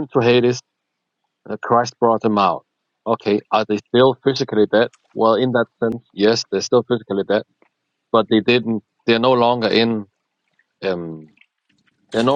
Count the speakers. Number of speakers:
1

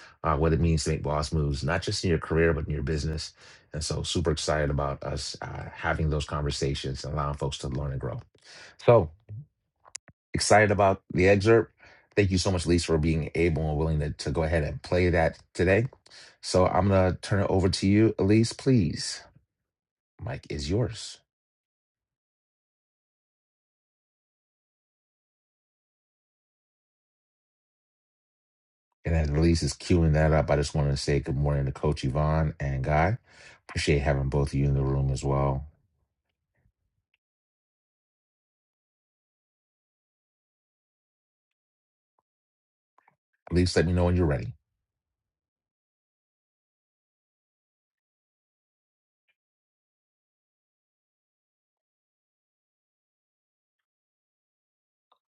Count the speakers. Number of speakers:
1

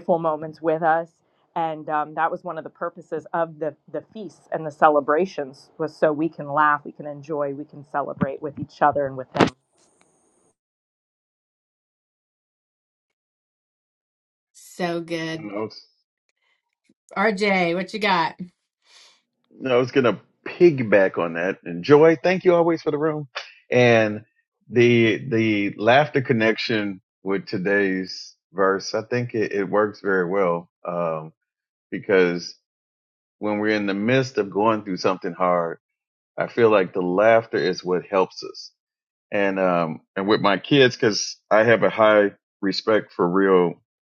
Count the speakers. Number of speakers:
3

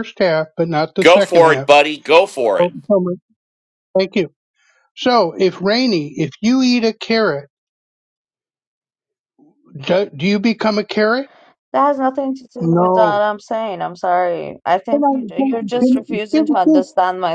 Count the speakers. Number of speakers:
3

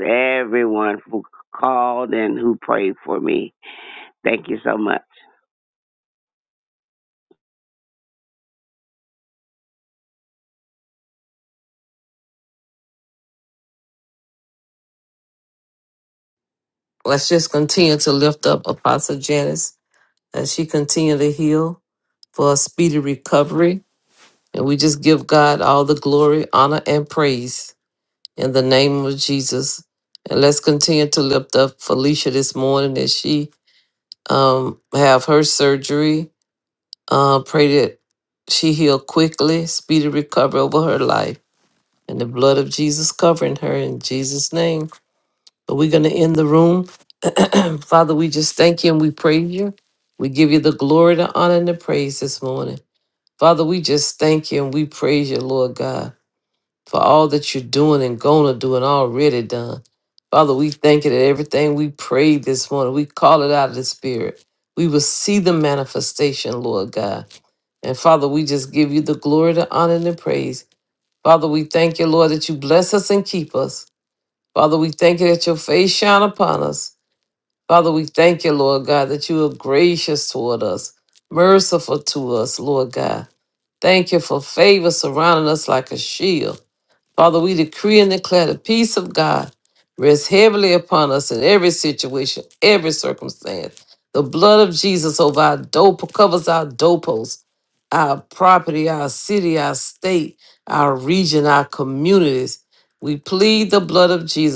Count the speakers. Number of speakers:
2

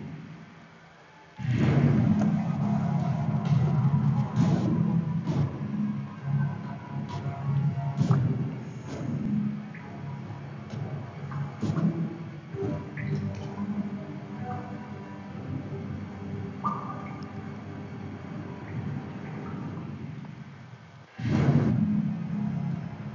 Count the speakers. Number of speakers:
0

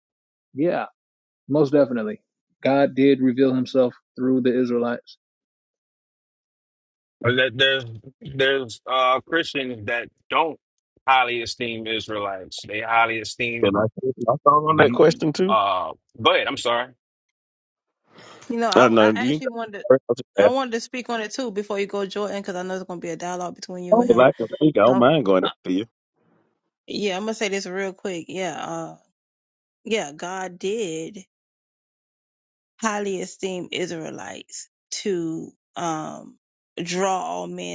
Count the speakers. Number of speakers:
4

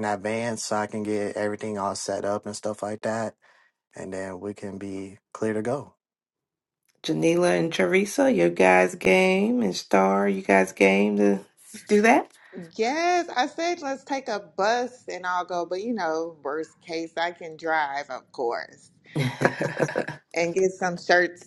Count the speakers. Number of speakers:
3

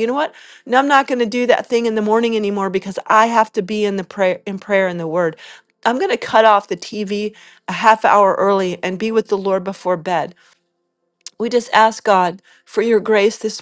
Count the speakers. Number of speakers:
1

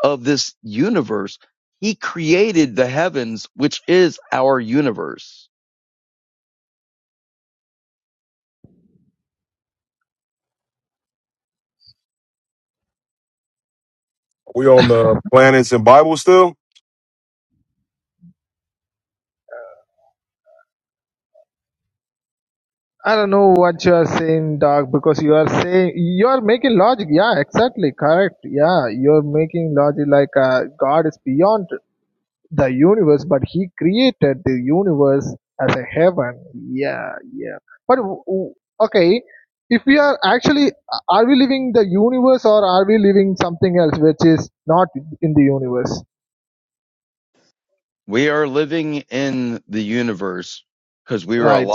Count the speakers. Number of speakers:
3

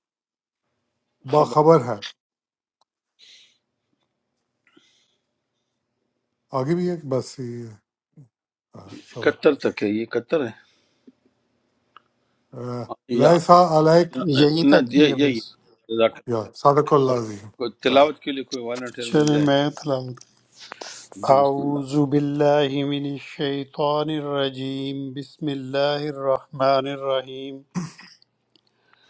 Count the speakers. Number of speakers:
3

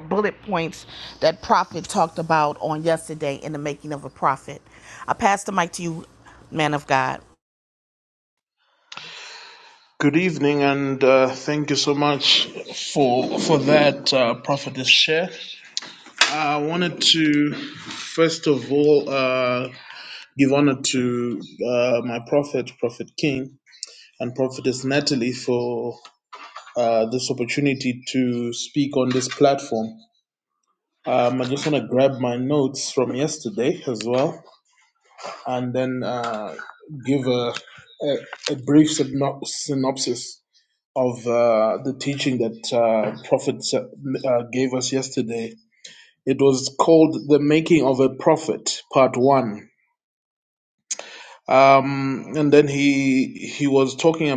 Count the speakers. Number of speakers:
2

